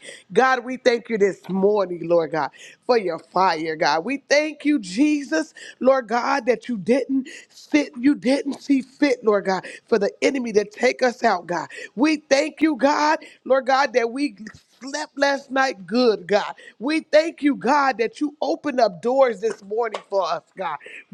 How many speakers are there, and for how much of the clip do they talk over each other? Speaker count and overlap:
one, no overlap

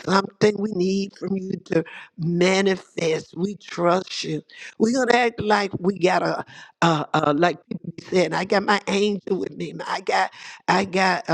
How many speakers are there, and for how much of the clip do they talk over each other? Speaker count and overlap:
one, no overlap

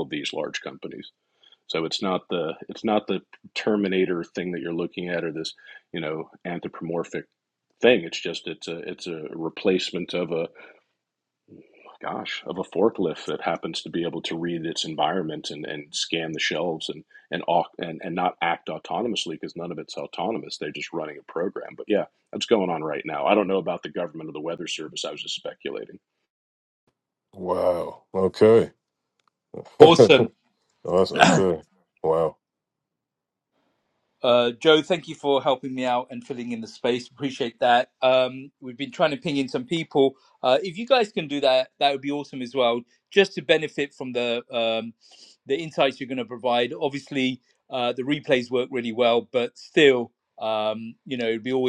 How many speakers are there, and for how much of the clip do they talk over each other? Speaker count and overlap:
three, about 1%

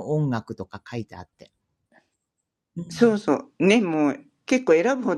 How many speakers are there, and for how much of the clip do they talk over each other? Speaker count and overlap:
two, about 1%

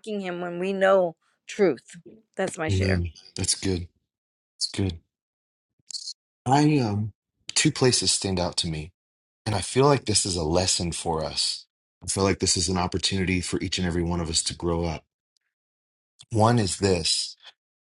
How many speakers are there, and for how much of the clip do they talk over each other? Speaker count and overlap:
two, about 2%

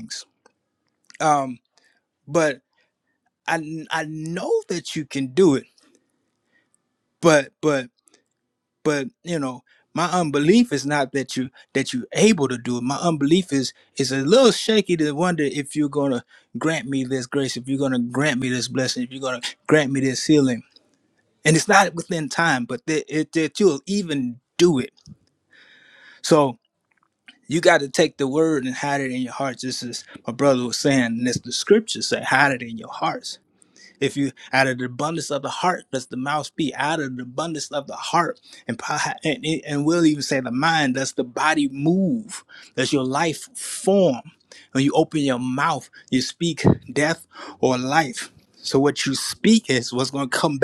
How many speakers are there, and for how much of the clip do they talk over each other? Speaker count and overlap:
one, no overlap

